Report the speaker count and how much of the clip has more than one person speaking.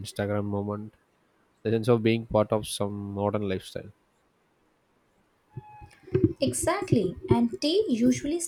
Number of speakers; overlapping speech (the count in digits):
2, no overlap